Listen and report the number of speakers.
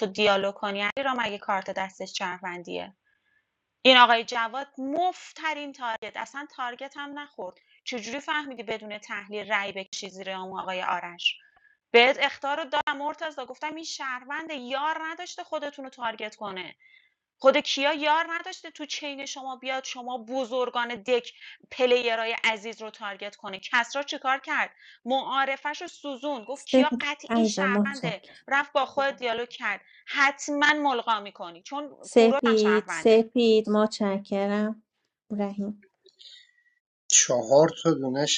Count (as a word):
three